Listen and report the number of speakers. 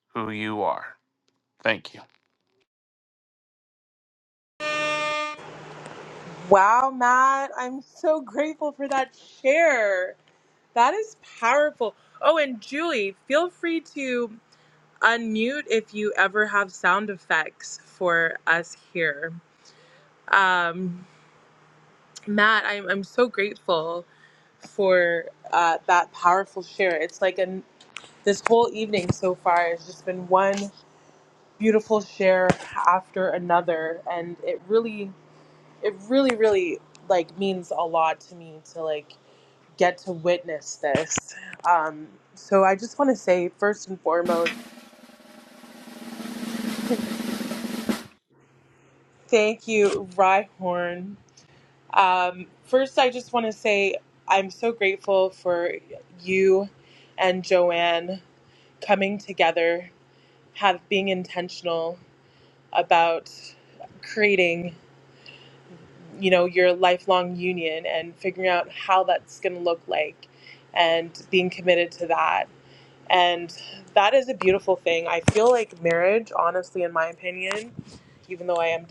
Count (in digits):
2